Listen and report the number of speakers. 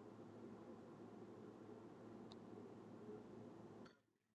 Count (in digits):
0